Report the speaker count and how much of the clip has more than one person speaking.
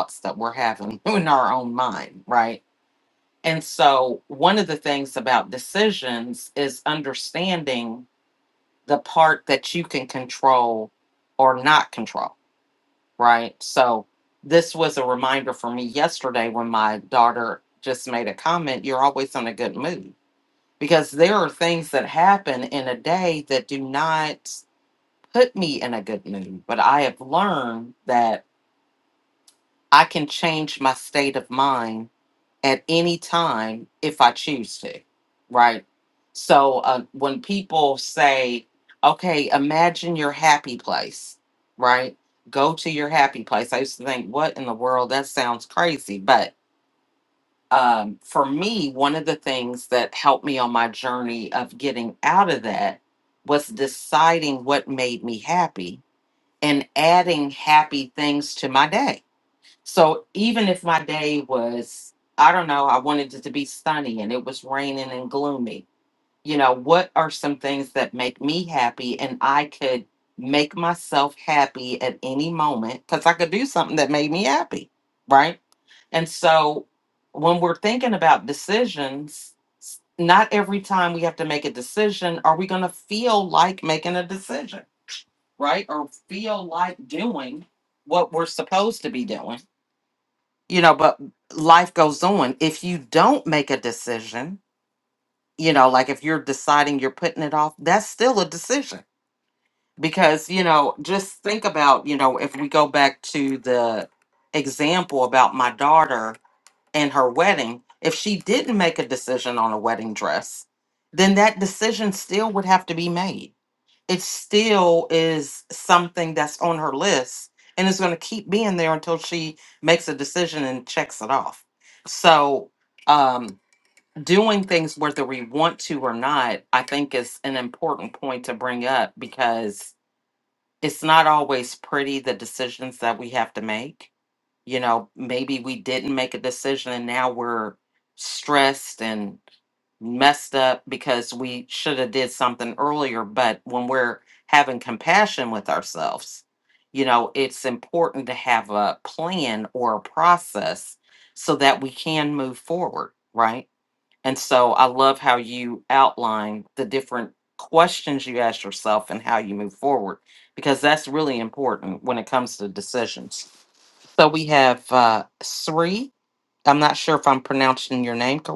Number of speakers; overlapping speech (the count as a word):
one, no overlap